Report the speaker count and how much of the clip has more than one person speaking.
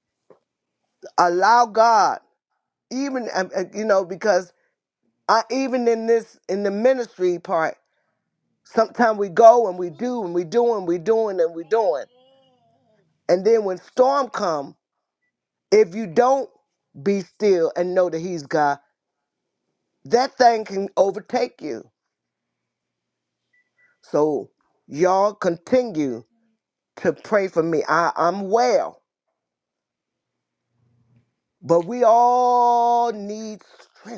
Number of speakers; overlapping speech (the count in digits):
1, no overlap